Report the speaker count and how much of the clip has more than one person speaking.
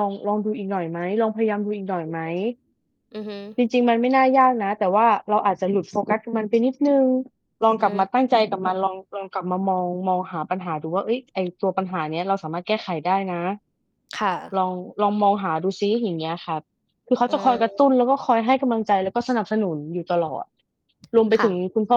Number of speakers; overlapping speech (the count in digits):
2, about 3%